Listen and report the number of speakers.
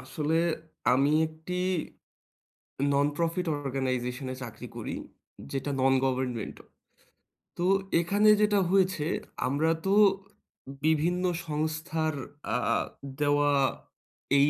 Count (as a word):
one